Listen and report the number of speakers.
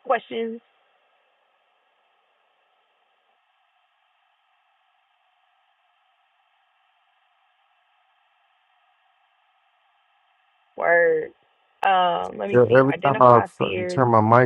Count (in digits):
2